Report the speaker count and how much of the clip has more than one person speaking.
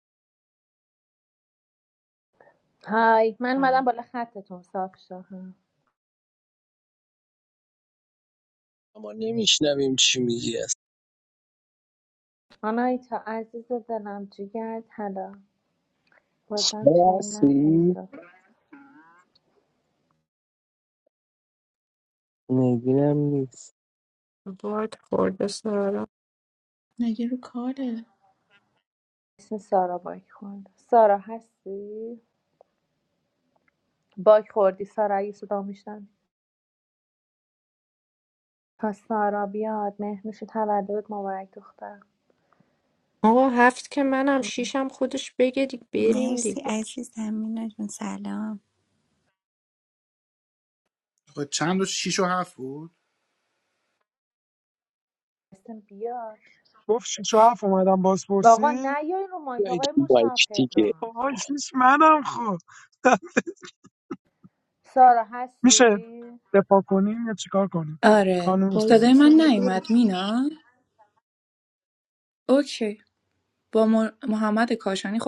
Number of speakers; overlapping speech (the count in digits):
8, about 8%